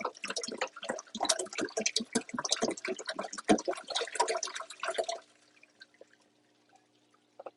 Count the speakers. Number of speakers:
zero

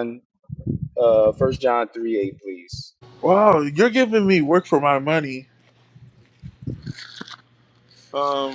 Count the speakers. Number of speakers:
two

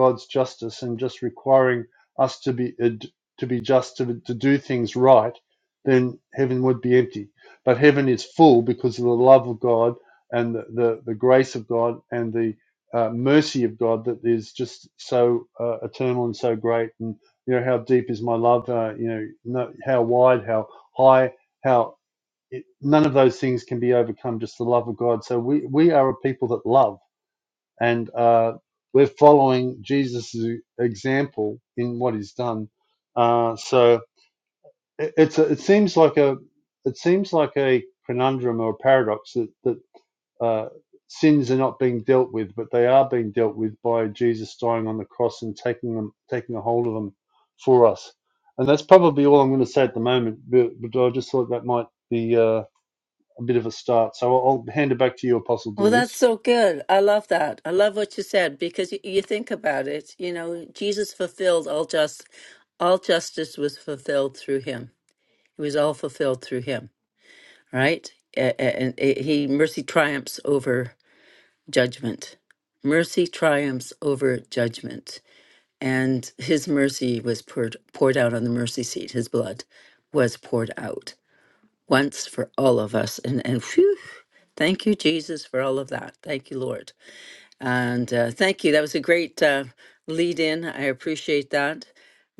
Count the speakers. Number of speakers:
two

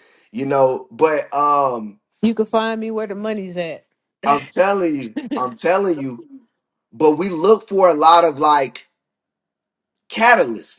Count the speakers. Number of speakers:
two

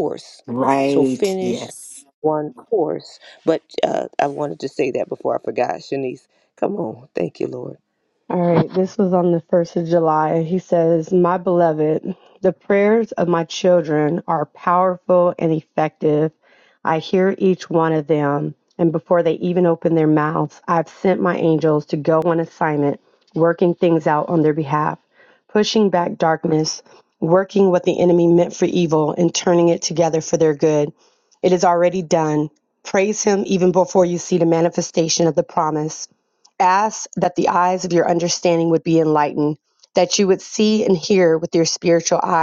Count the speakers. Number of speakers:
three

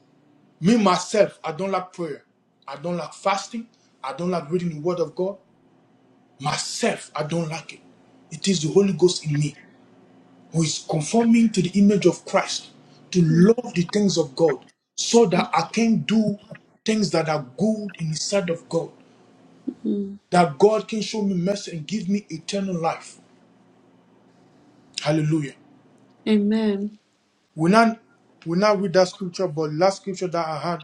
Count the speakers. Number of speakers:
two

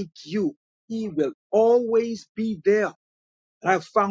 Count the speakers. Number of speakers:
one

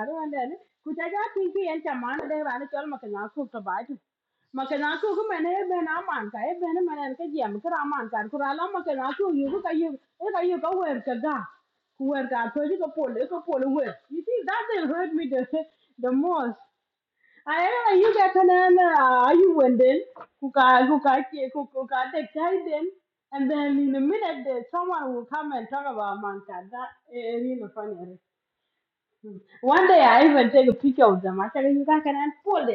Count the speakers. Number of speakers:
one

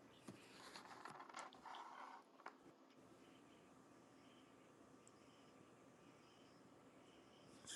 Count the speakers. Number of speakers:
zero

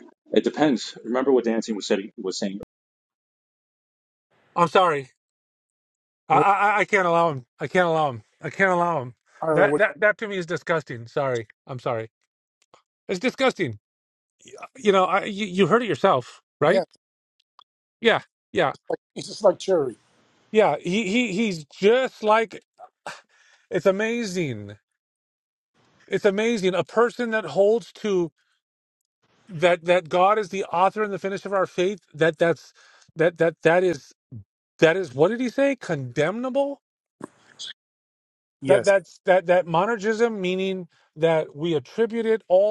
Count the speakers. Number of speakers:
three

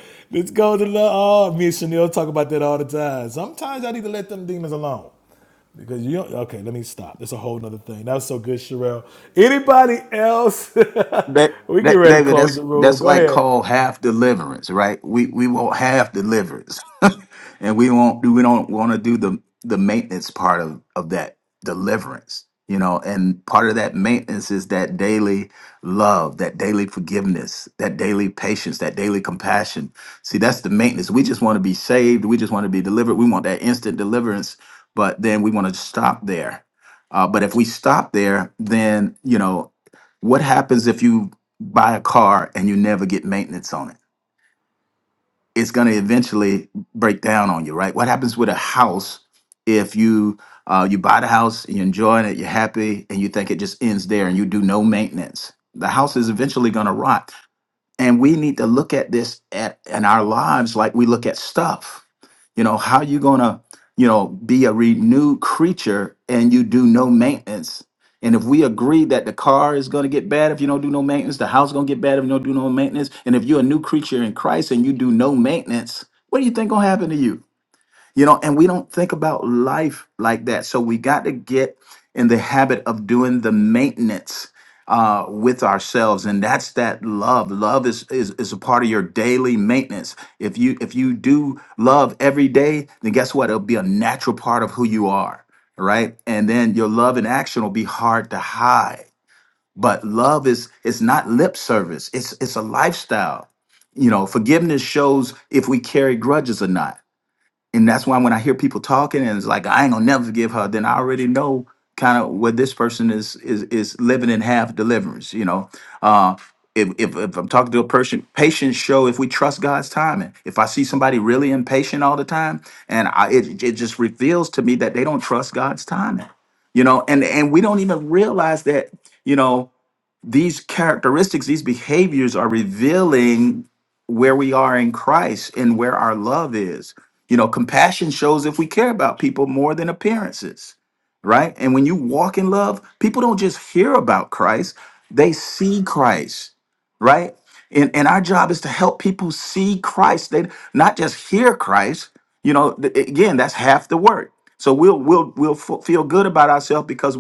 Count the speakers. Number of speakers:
two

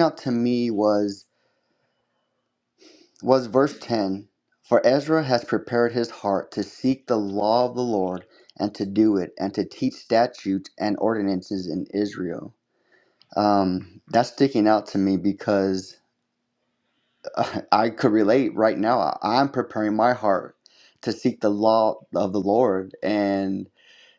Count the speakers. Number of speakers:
one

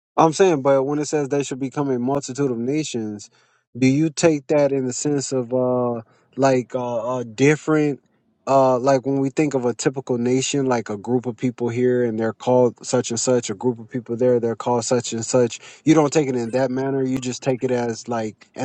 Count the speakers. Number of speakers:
one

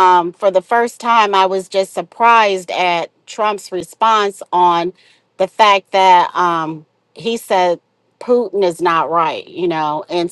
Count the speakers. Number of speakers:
one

